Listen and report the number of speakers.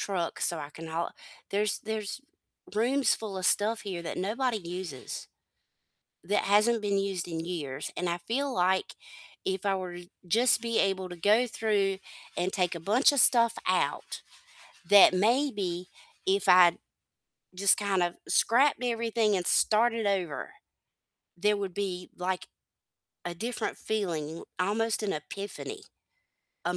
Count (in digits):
1